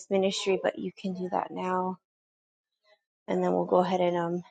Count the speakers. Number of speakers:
1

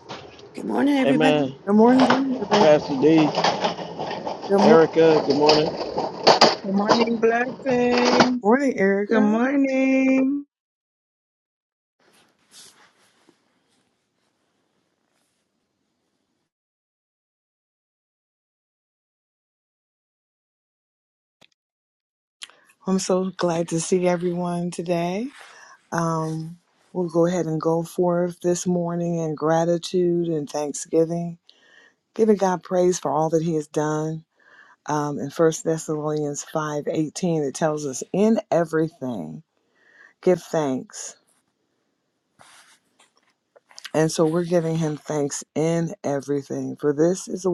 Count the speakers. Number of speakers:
4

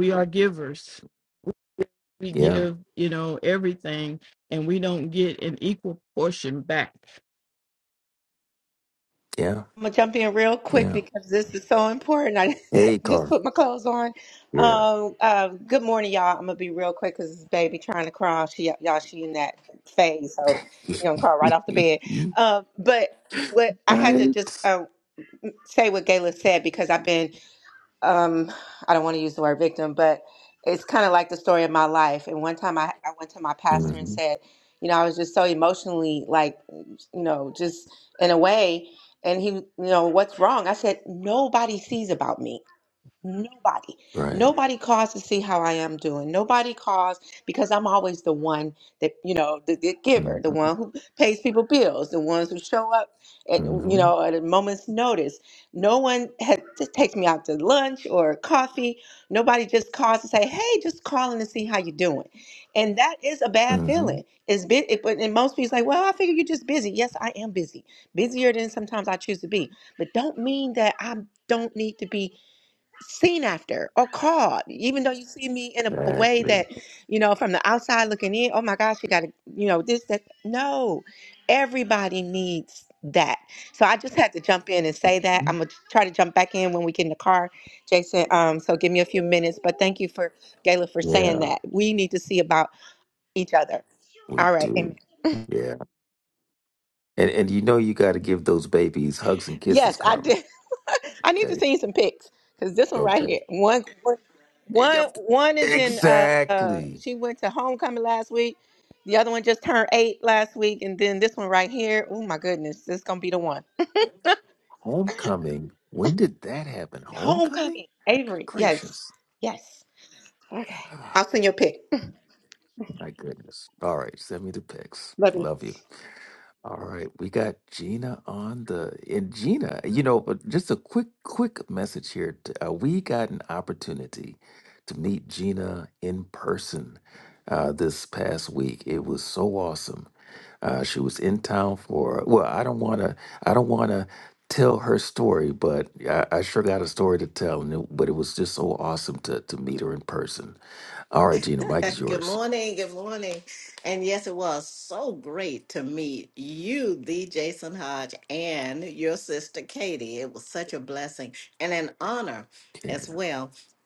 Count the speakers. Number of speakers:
4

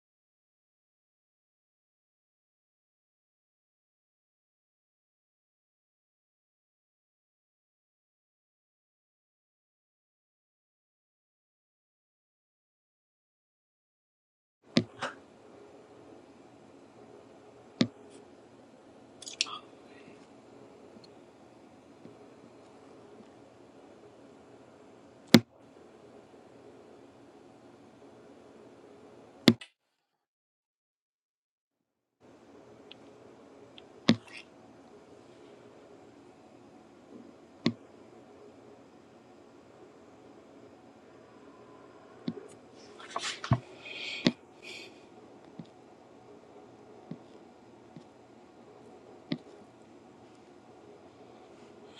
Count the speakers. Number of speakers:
0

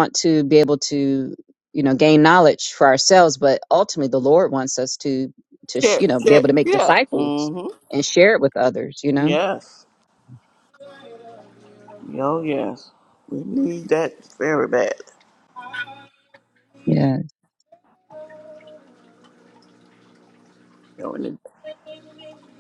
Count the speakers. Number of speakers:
2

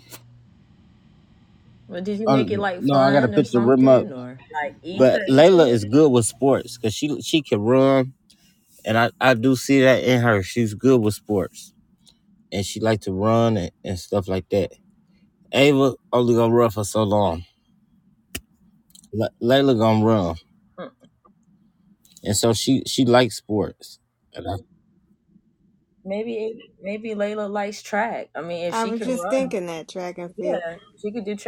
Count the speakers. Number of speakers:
3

